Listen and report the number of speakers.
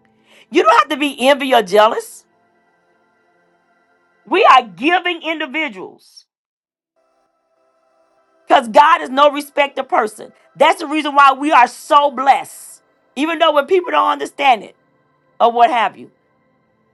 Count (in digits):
1